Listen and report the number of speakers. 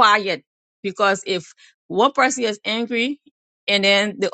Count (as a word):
one